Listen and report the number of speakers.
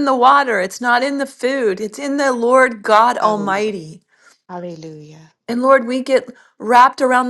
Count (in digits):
2